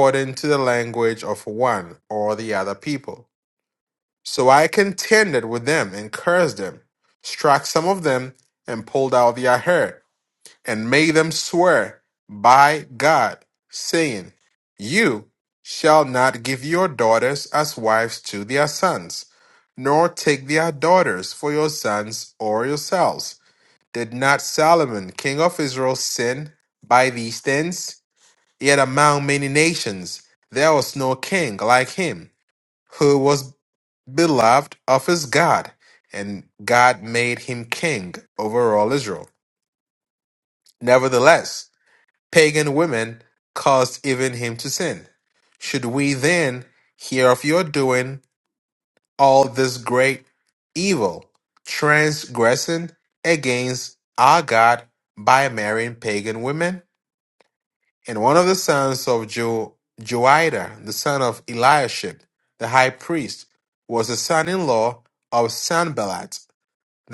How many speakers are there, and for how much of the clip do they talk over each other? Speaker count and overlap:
1, no overlap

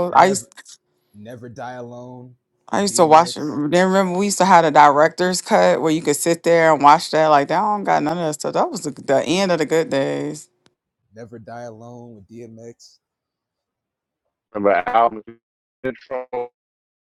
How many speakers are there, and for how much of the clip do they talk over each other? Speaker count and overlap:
3, about 6%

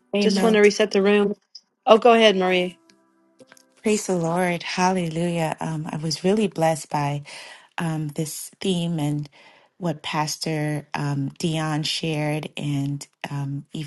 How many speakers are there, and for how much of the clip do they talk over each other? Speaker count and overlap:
2, about 3%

